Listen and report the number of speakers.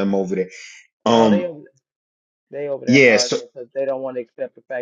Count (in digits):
2